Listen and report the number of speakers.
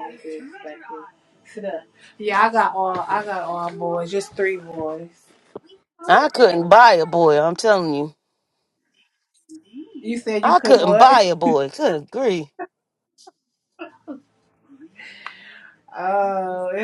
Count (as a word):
two